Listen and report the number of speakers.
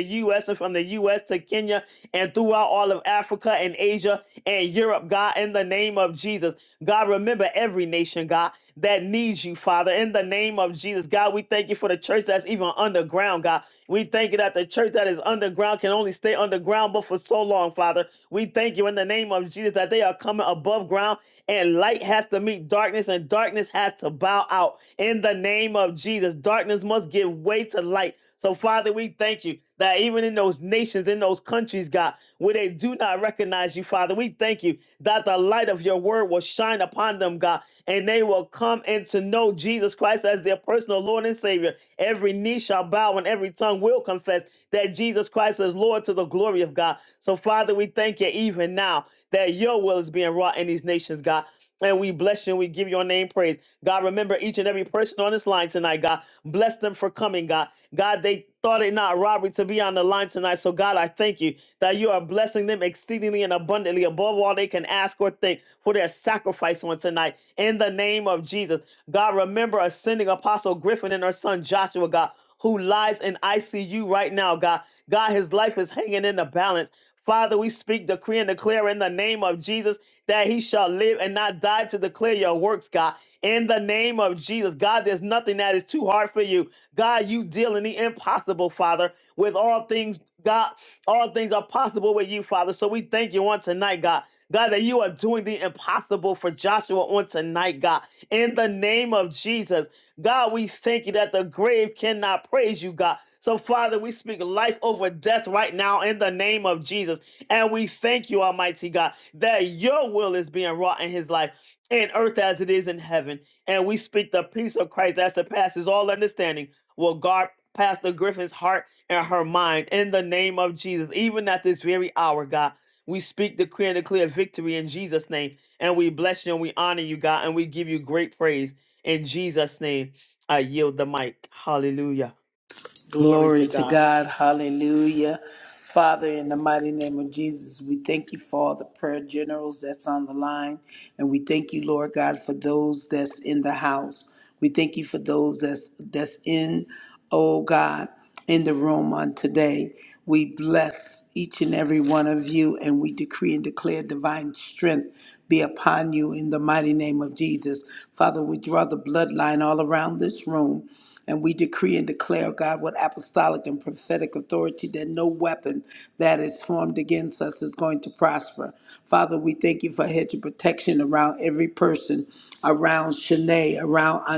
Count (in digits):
2